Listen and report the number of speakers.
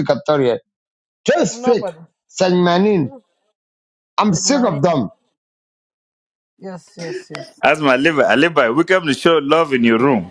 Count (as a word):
three